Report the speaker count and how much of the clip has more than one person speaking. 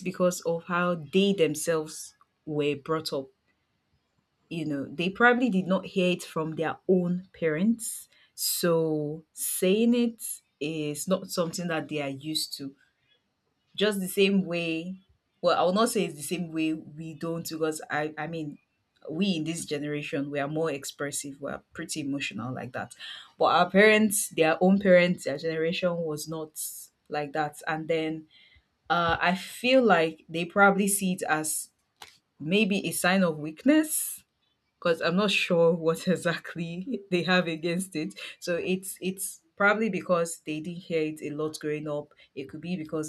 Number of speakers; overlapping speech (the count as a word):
one, no overlap